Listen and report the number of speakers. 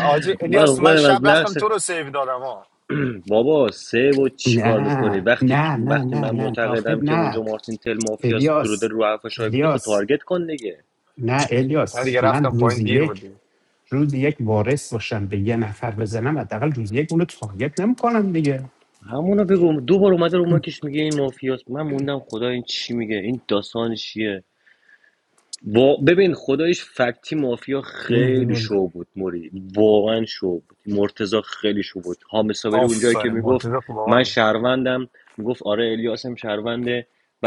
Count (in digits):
3